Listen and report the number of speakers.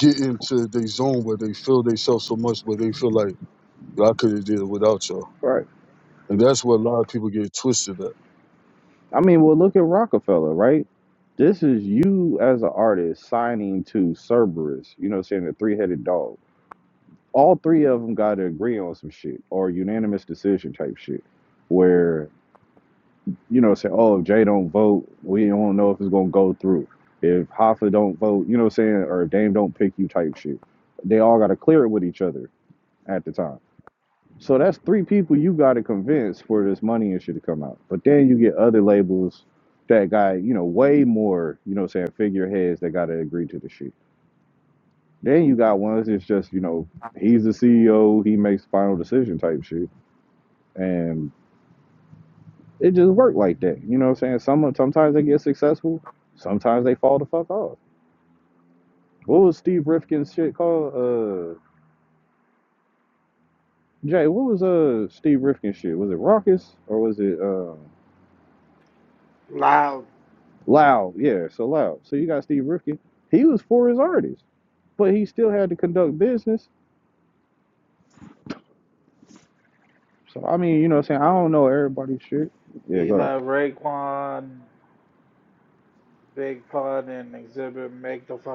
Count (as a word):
three